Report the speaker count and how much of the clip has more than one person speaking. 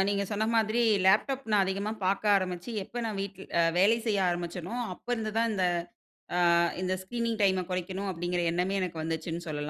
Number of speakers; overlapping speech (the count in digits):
1, no overlap